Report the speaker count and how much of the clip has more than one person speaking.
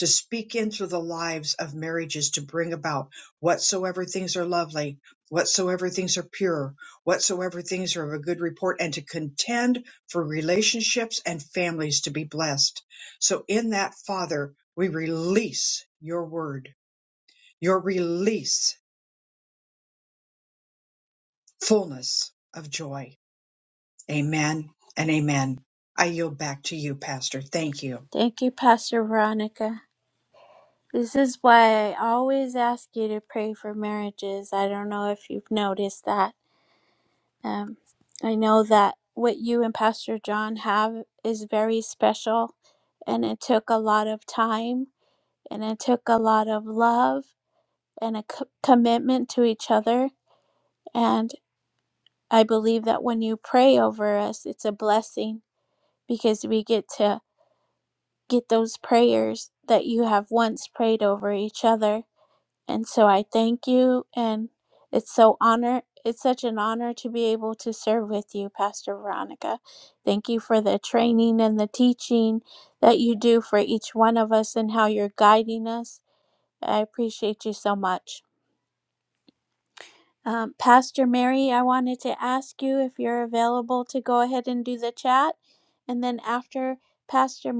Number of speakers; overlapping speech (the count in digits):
2, no overlap